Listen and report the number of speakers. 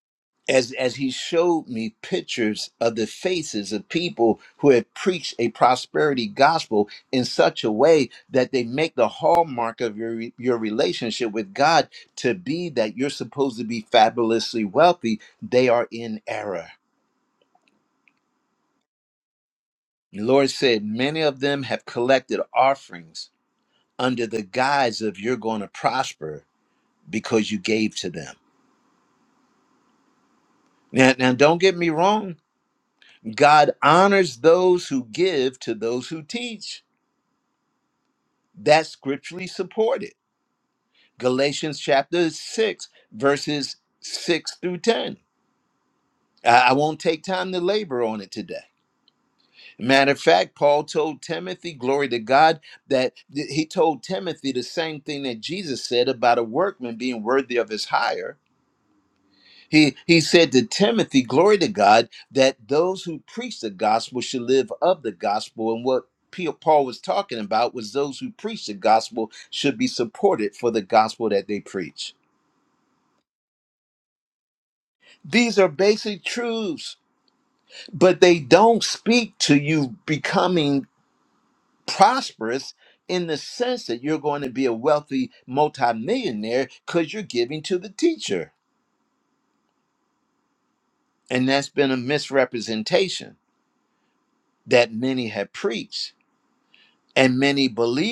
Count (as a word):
one